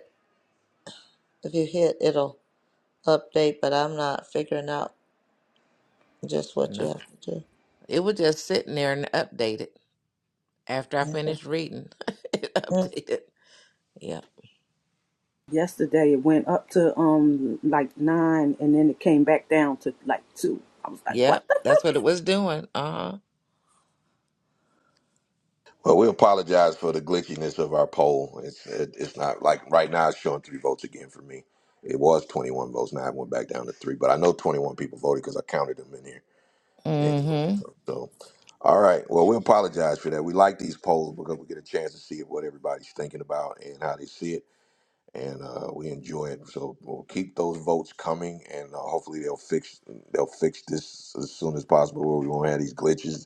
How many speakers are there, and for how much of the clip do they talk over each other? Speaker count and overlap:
4, about 2%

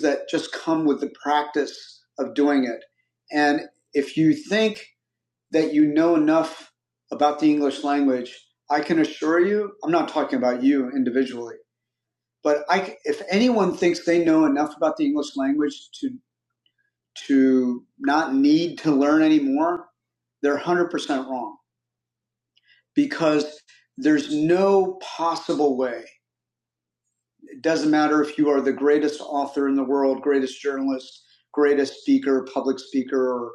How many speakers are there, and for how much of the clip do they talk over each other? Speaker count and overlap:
1, no overlap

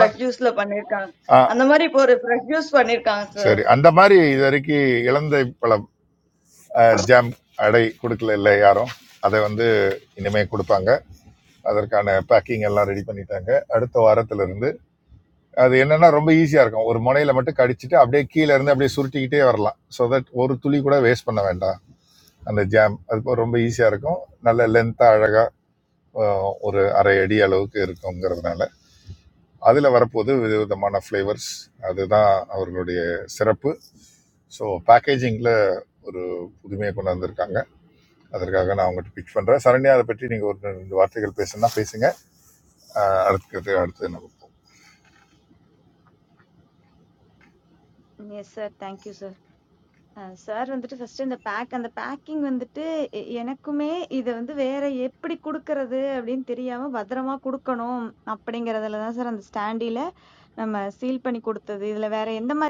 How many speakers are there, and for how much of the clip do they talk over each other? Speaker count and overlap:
3, under 1%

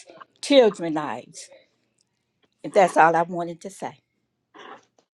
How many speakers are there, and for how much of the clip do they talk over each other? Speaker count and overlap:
1, no overlap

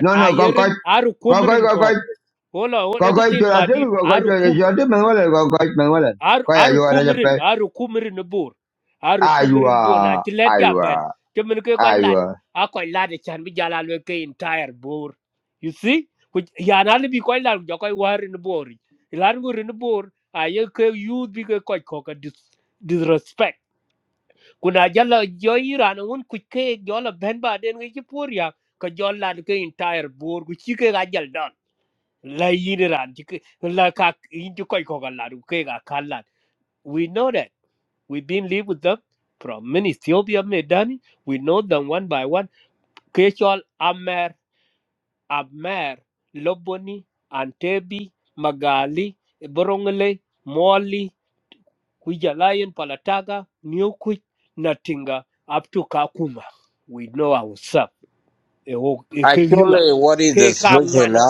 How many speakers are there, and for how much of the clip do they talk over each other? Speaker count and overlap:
3, about 13%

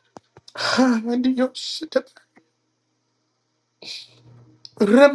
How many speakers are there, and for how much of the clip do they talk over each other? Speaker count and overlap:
1, no overlap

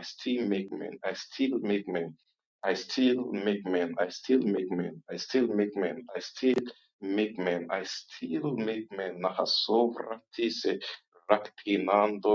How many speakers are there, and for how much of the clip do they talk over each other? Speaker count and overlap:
1, no overlap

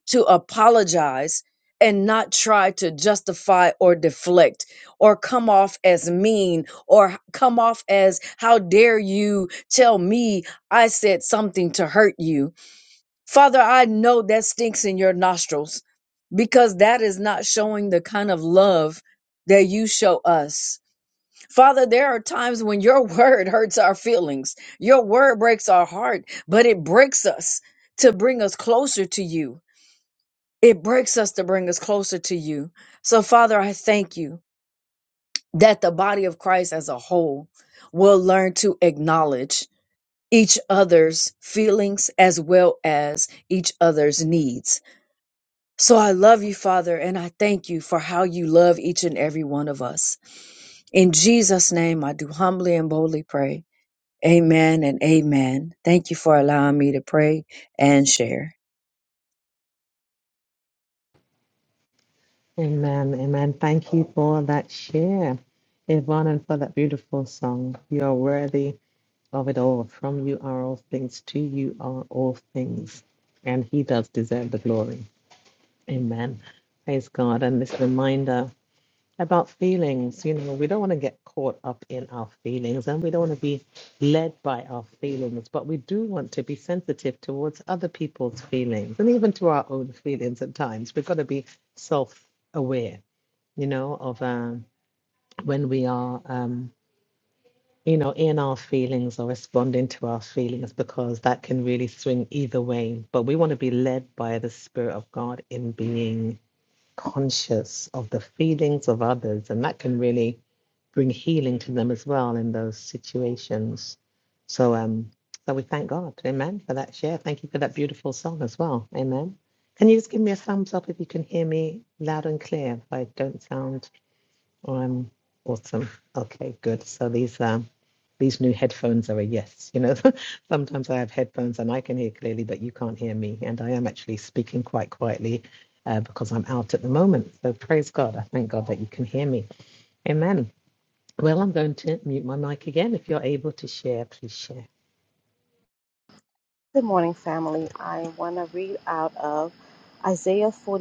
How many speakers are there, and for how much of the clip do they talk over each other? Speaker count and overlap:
3, no overlap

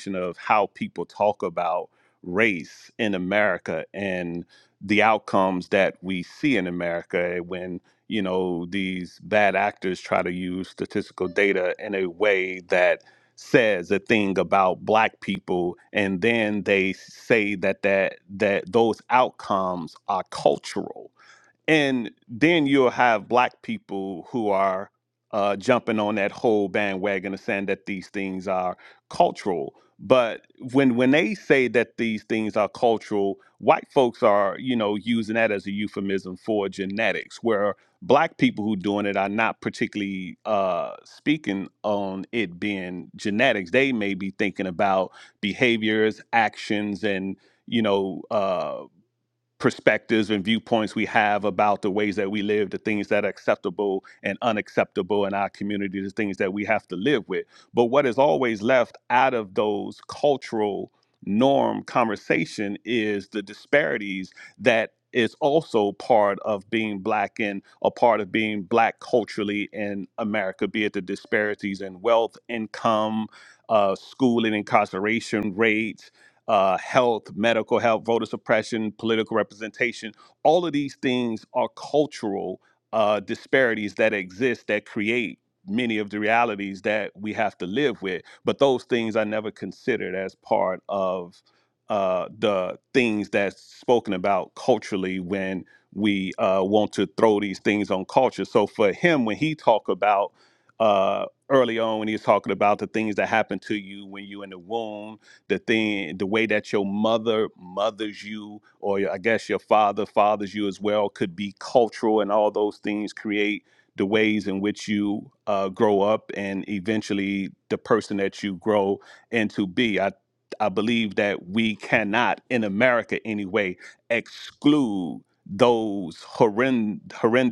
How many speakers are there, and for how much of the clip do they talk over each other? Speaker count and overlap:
1, no overlap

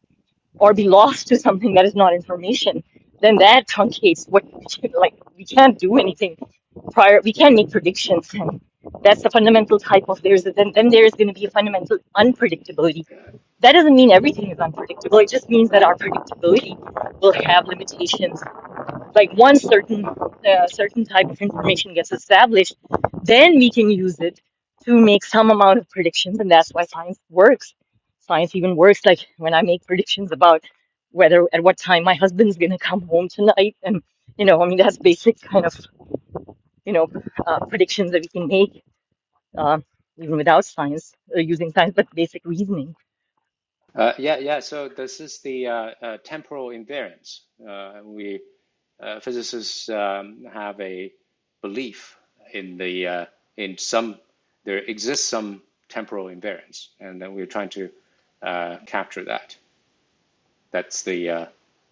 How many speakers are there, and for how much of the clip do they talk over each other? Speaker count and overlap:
2, no overlap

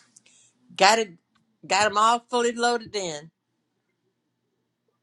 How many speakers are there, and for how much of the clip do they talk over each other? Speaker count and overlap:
1, no overlap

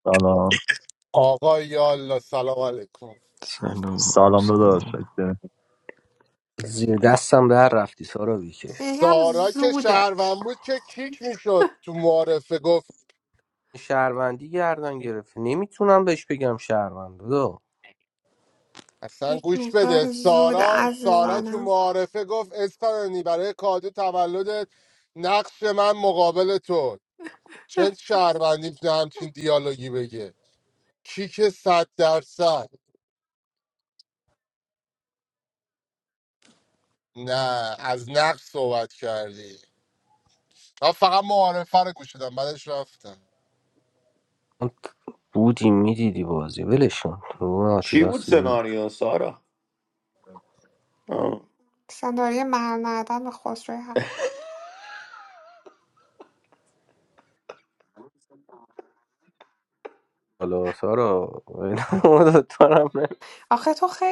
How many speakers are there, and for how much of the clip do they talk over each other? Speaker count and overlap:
6, about 8%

